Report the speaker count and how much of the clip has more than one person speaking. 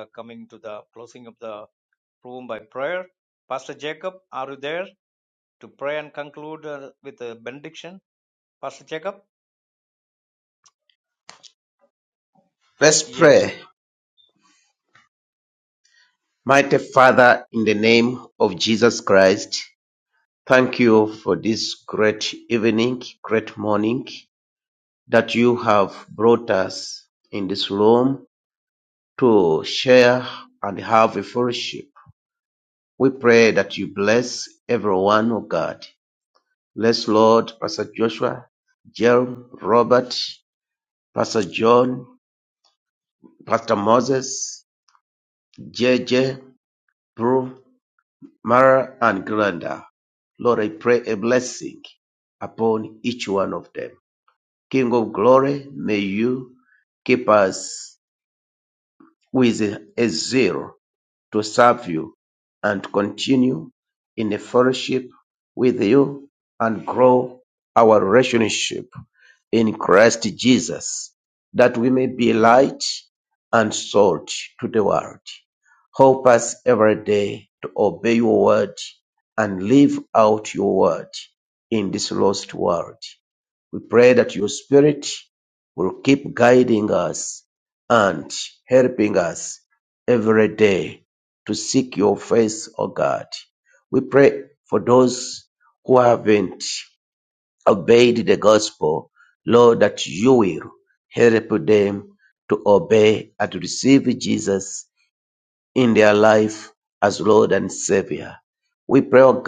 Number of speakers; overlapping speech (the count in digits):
2, under 1%